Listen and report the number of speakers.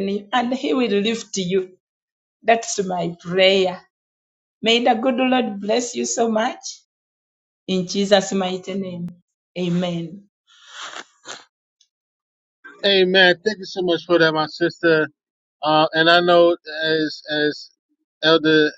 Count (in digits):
2